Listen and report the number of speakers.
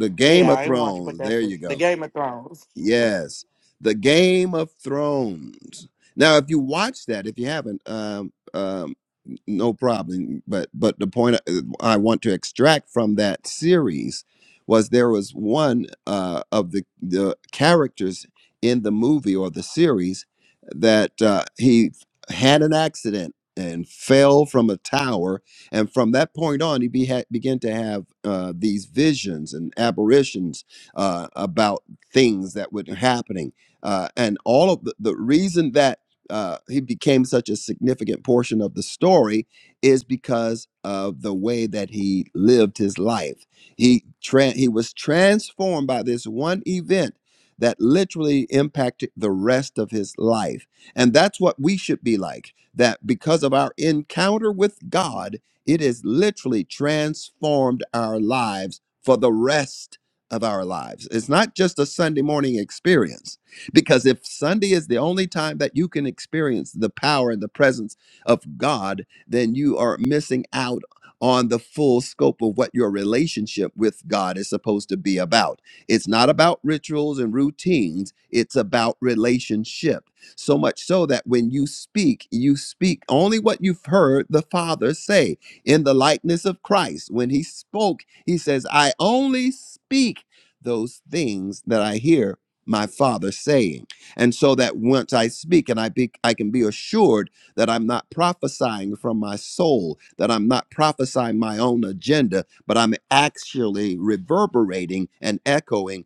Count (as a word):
two